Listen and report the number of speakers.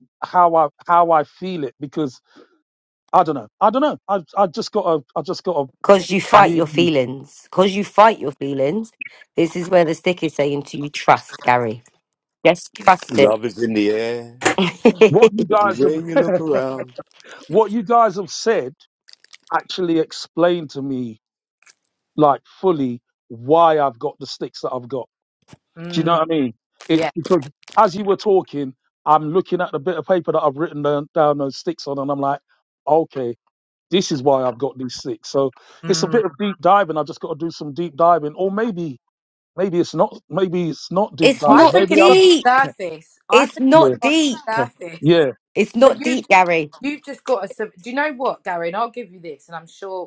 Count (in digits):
4